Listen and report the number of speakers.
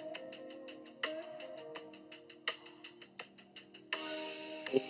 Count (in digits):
0